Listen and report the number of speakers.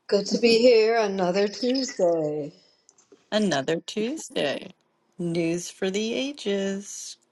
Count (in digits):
2